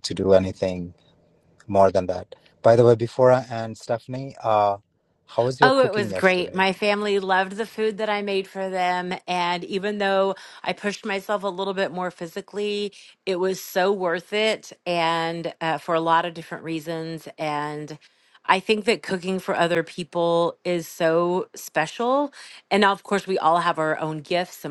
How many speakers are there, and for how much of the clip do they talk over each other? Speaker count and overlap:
2, about 4%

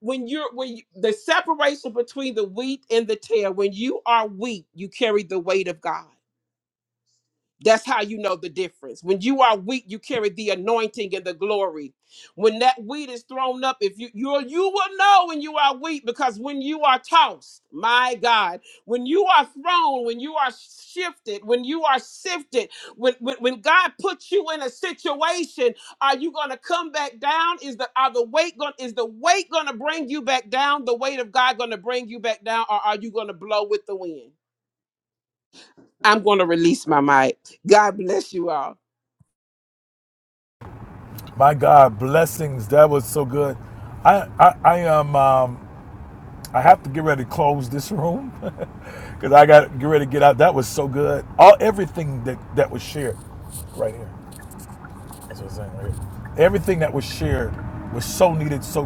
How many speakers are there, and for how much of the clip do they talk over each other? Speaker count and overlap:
2, no overlap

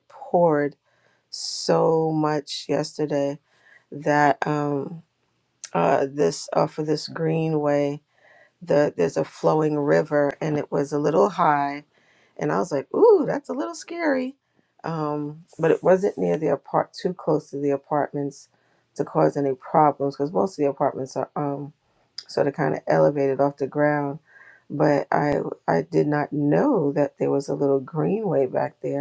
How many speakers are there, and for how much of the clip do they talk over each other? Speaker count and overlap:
1, no overlap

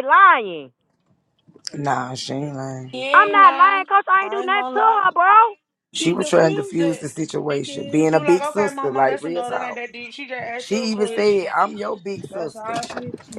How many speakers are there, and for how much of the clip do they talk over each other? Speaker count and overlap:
3, about 48%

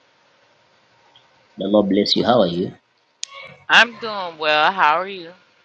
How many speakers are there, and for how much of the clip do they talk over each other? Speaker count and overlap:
2, no overlap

